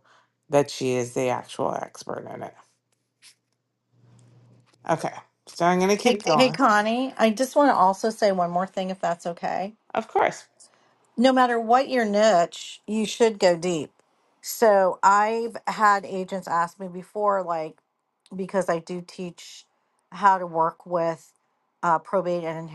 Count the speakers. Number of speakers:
2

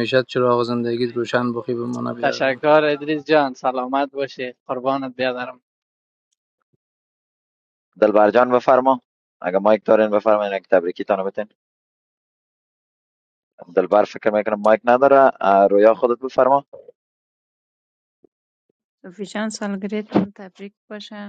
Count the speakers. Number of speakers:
4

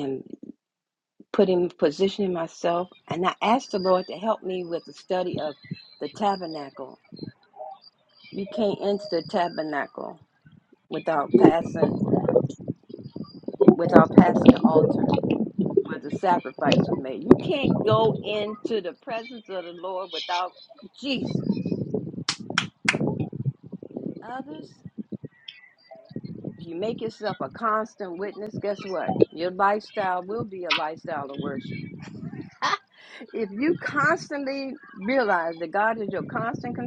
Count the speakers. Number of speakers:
1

